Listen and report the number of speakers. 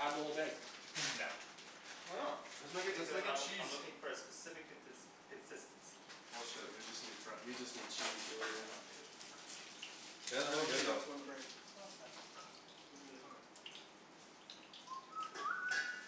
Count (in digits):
3